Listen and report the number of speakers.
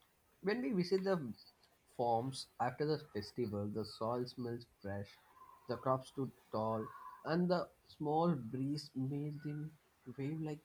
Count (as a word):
one